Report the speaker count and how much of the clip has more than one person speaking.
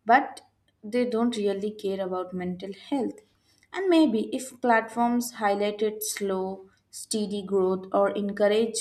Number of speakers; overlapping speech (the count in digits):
1, no overlap